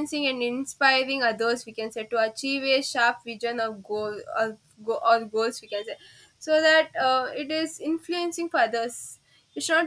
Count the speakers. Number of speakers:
1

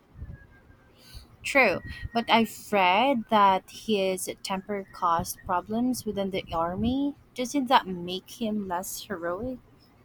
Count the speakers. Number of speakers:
1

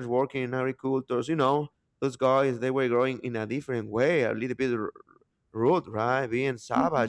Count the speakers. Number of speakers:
1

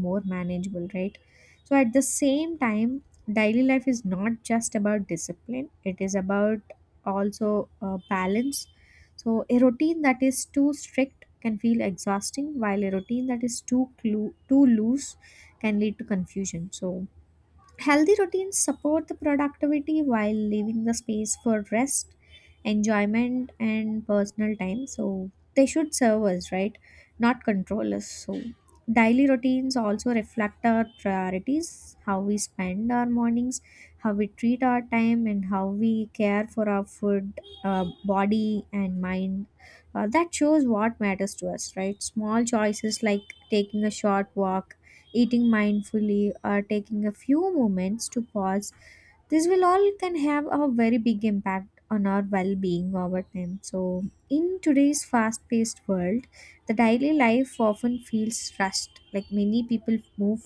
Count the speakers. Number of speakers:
1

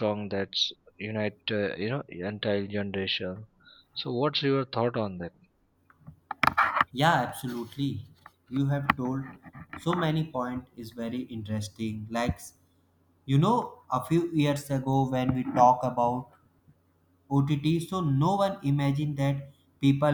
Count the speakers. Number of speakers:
2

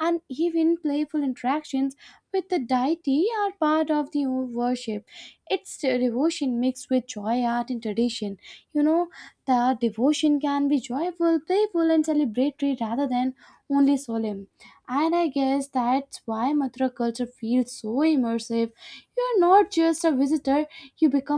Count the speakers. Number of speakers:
1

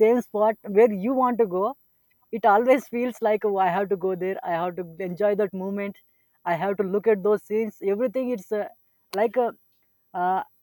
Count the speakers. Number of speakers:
1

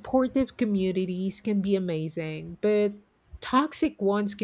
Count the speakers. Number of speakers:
1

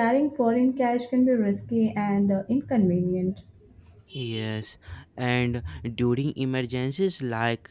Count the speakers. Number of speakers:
2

